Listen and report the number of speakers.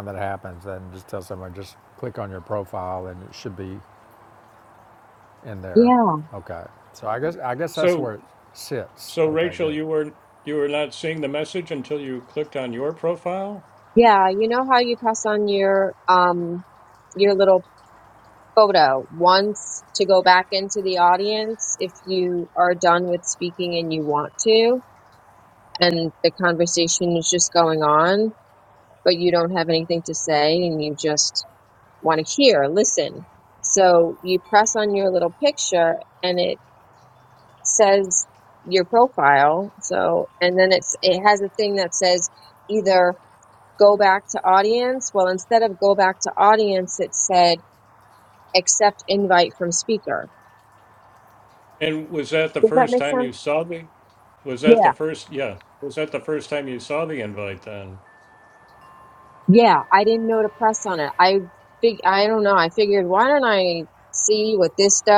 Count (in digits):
3